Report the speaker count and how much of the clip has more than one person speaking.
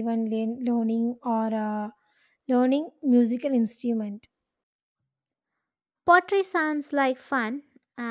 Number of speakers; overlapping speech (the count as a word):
two, no overlap